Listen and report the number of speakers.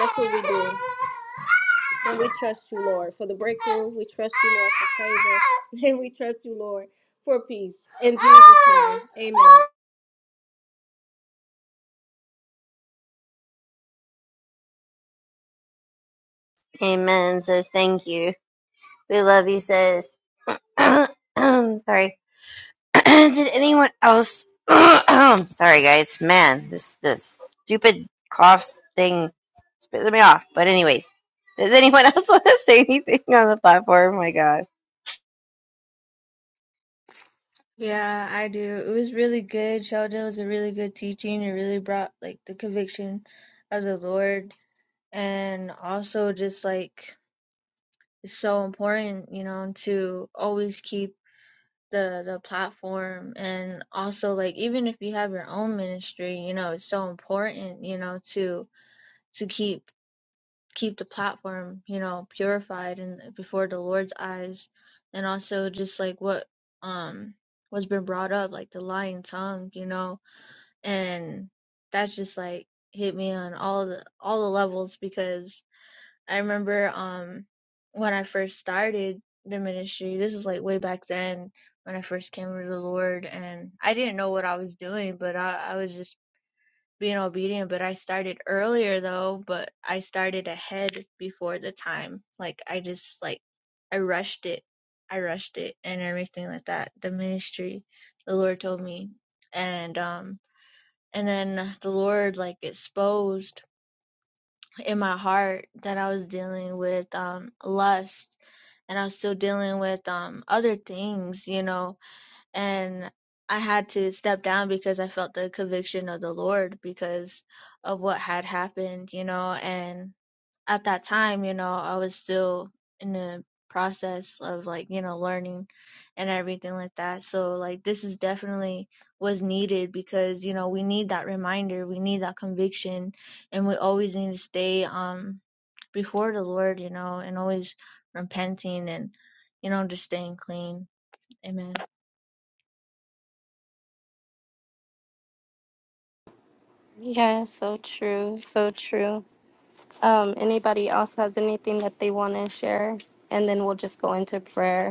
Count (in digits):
4